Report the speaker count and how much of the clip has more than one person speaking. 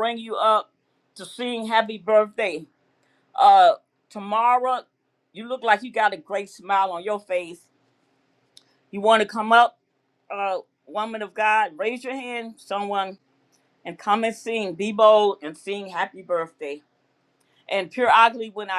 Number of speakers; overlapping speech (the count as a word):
one, no overlap